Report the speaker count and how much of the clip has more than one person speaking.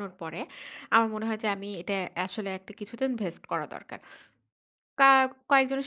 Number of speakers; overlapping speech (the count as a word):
one, no overlap